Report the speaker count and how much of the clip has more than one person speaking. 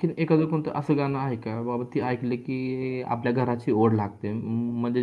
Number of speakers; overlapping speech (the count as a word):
one, no overlap